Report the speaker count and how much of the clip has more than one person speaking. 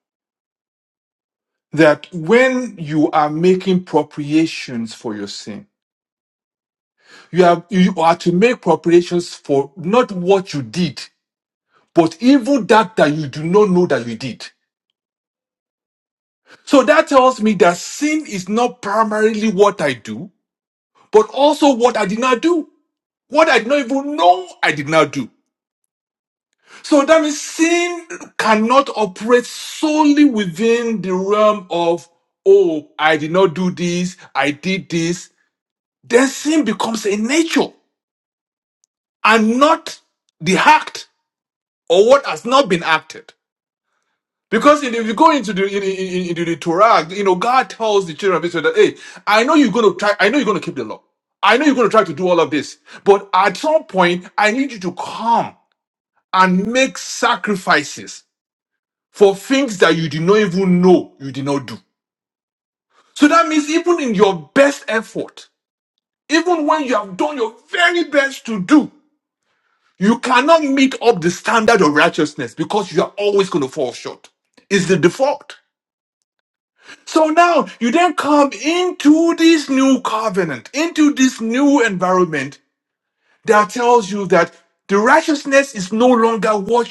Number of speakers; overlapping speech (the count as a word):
one, no overlap